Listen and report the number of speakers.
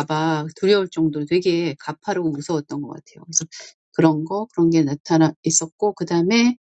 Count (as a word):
one